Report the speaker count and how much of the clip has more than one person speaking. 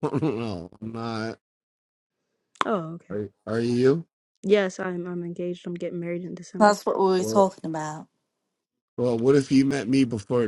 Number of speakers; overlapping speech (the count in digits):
3, about 4%